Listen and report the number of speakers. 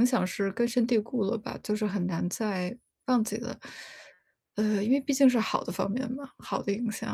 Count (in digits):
1